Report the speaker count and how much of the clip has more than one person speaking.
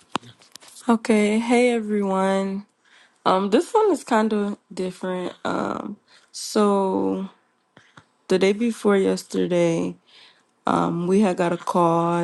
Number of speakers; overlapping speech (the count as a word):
one, no overlap